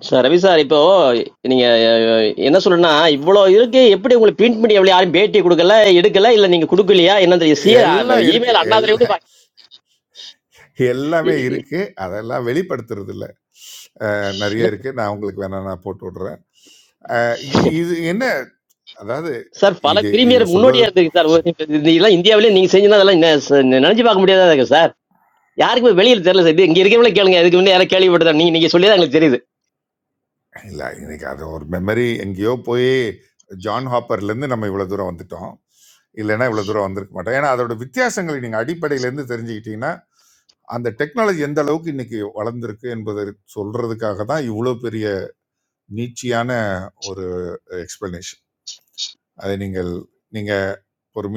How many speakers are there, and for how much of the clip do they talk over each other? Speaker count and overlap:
two, about 5%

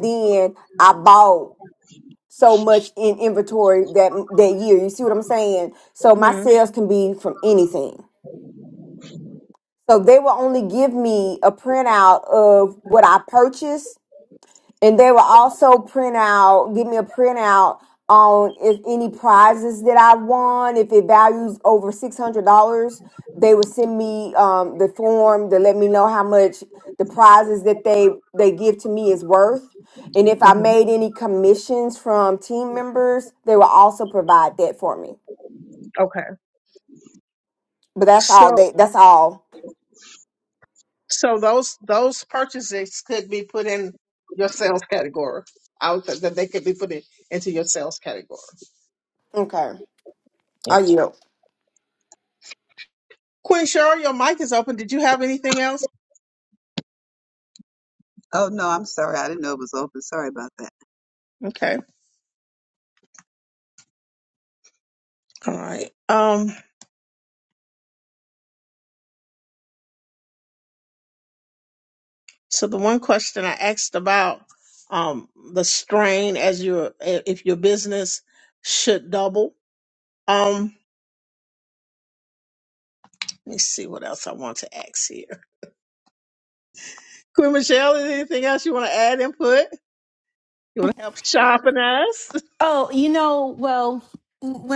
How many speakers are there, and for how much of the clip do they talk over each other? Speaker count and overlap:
four, about 1%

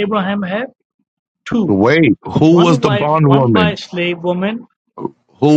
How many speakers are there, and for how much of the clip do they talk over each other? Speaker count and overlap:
two, about 25%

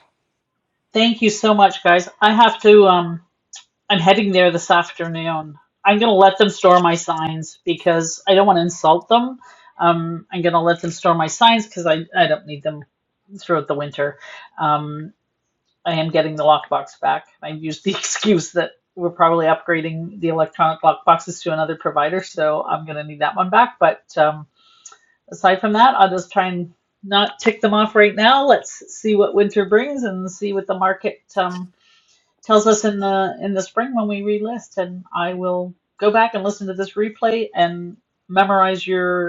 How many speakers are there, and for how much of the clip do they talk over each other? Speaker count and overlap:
one, no overlap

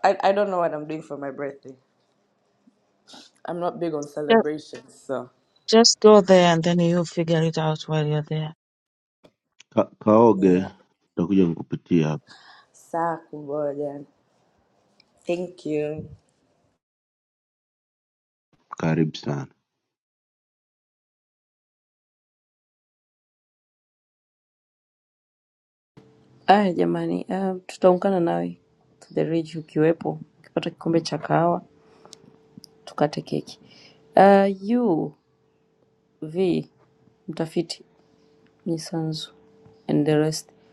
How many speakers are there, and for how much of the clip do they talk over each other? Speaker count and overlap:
four, about 1%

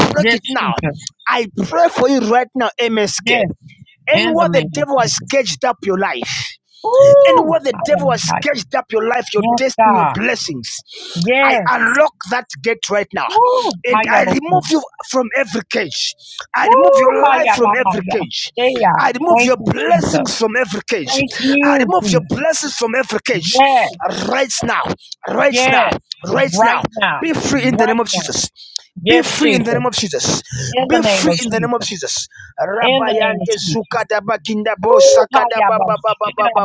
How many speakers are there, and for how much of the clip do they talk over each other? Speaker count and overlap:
two, about 39%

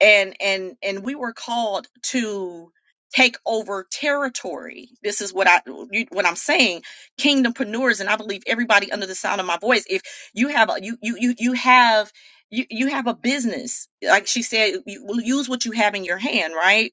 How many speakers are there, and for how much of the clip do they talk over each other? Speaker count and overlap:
one, no overlap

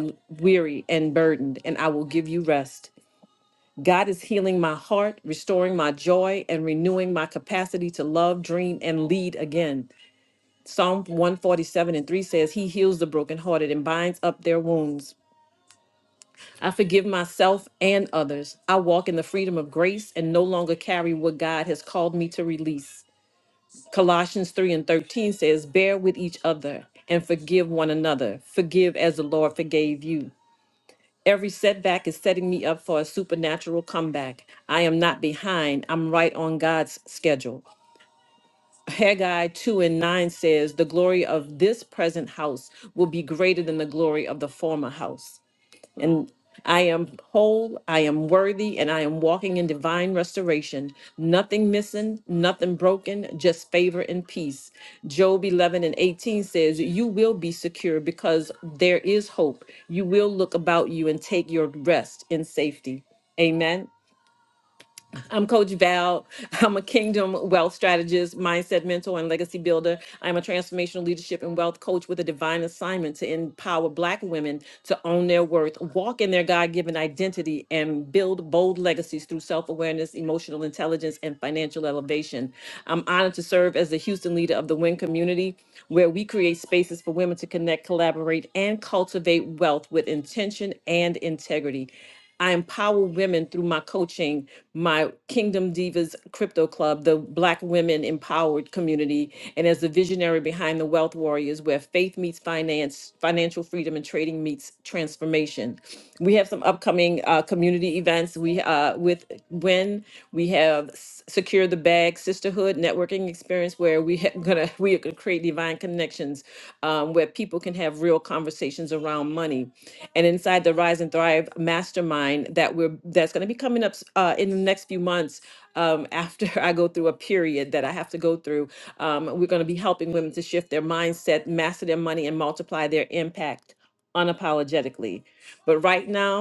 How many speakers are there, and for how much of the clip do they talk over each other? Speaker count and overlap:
one, no overlap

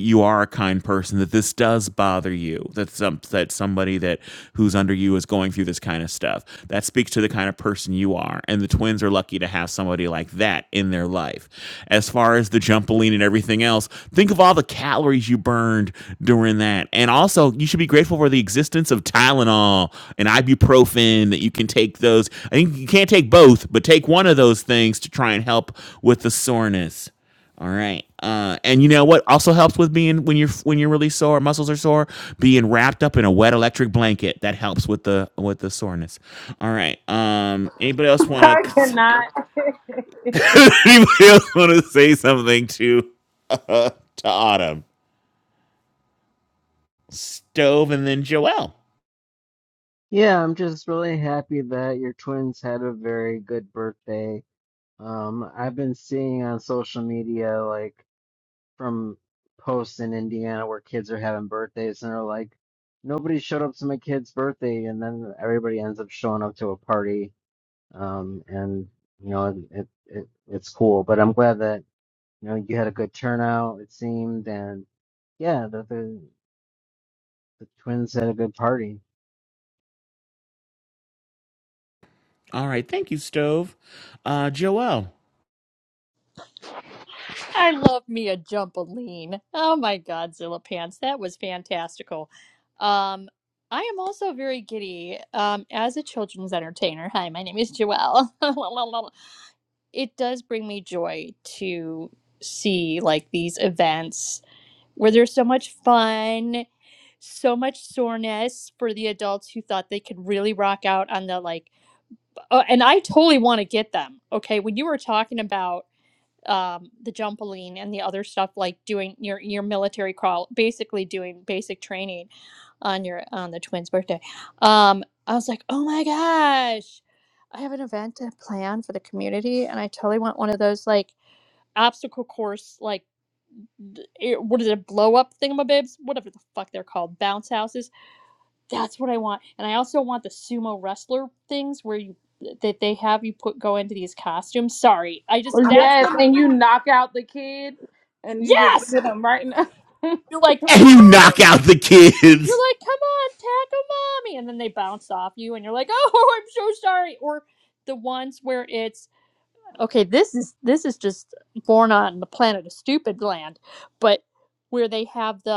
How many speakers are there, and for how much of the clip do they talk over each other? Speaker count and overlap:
four, about 1%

